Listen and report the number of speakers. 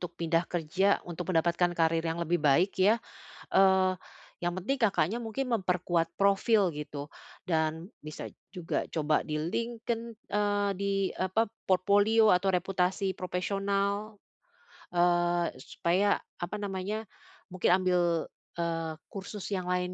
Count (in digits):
1